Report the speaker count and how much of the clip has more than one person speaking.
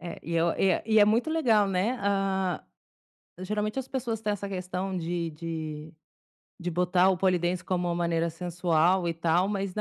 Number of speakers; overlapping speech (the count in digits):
1, no overlap